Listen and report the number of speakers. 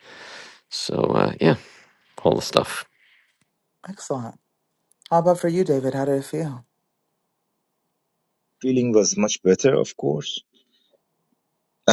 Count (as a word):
three